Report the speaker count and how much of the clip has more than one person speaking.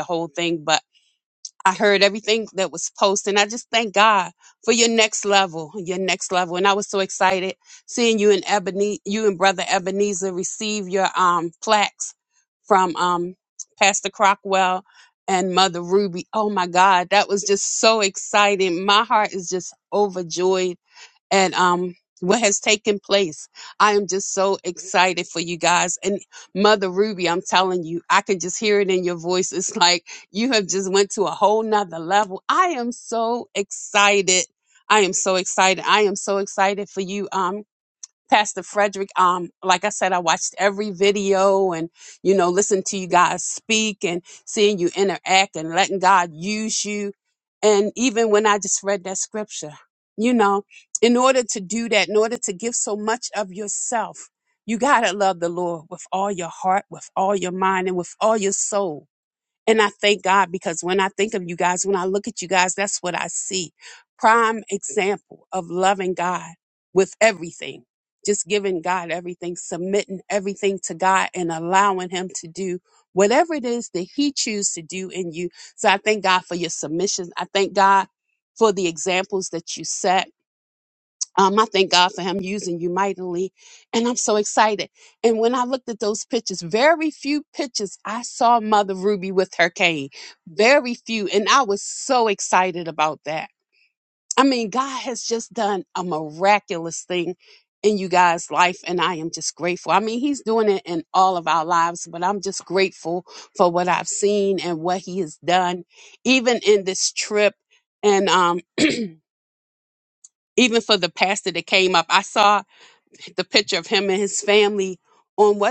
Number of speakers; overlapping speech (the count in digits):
1, no overlap